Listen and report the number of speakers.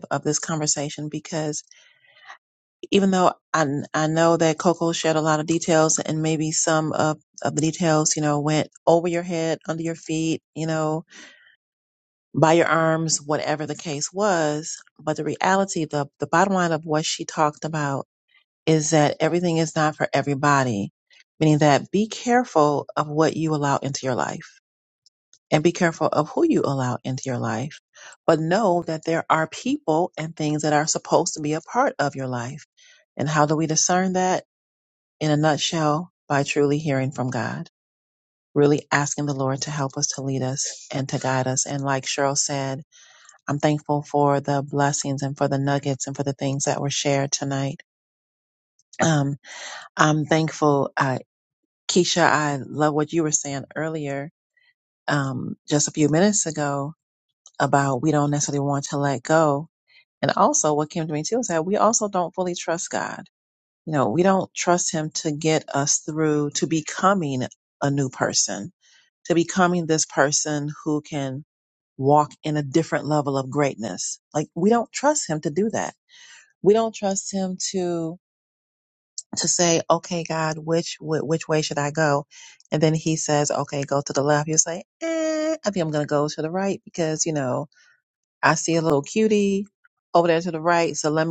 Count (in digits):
1